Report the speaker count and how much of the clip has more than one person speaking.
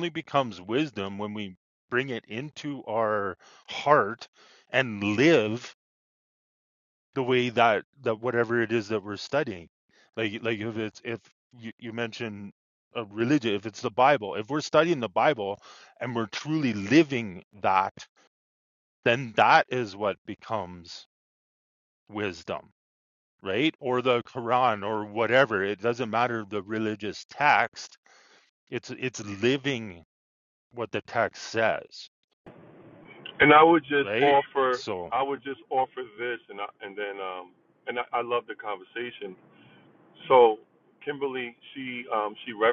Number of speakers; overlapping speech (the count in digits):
2, about 2%